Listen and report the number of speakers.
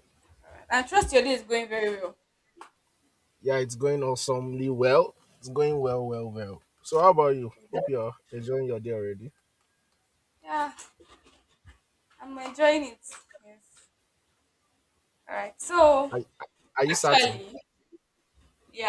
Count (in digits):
2